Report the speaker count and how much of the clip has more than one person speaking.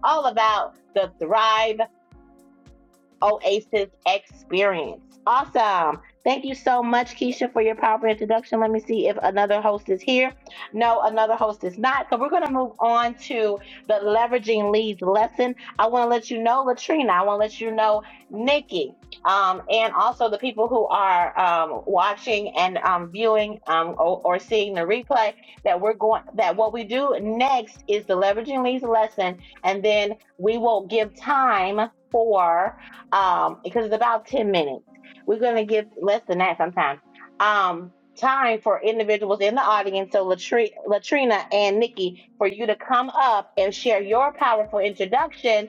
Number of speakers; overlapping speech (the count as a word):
one, no overlap